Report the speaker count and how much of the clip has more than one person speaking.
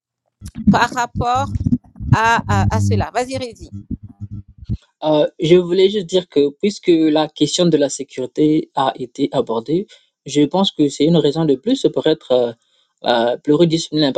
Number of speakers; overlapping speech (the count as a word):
two, no overlap